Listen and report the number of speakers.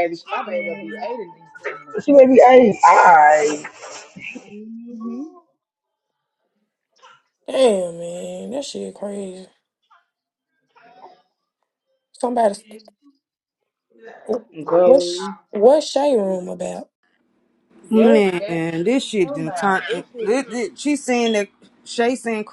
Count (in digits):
4